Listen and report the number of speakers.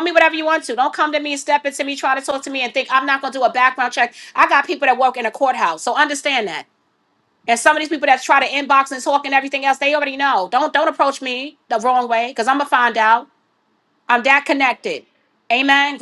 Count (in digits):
1